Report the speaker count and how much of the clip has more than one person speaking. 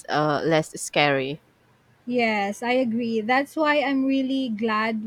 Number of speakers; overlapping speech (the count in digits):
2, no overlap